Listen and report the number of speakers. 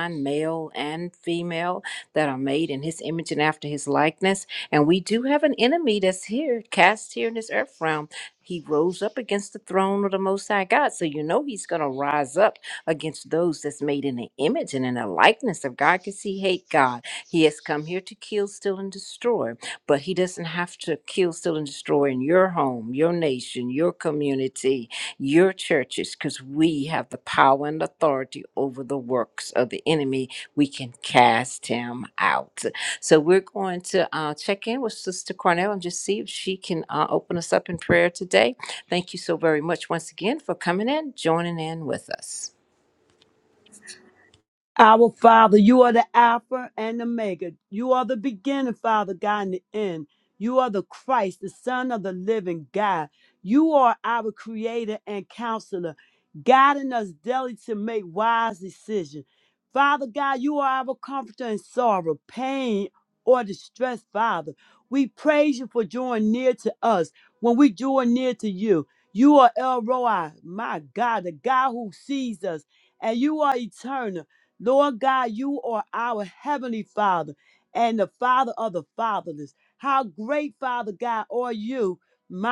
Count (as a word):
two